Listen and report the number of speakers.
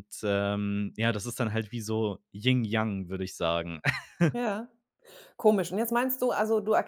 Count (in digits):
2